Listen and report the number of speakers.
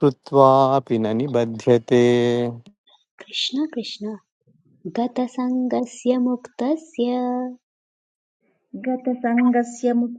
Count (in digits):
3